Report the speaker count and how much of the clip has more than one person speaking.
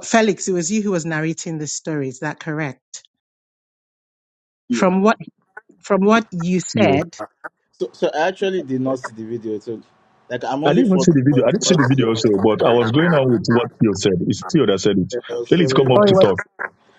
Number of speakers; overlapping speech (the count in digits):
3, about 21%